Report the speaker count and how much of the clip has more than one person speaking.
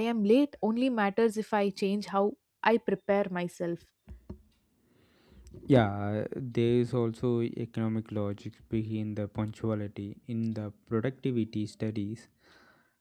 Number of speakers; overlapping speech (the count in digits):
2, no overlap